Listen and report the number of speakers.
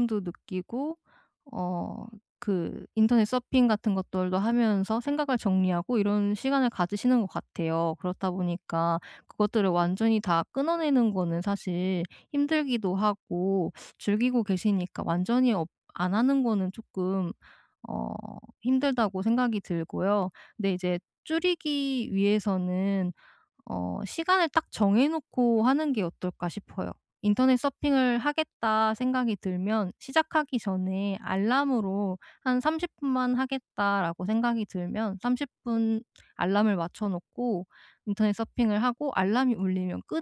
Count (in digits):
1